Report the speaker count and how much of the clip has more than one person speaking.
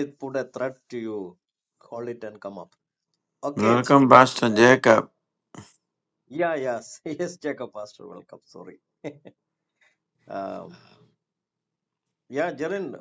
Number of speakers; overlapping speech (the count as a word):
two, about 6%